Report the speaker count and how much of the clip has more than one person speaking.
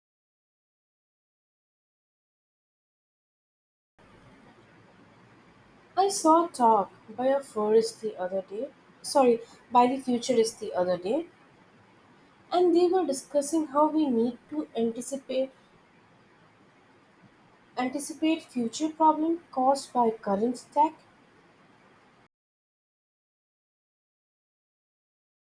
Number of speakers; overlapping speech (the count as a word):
one, no overlap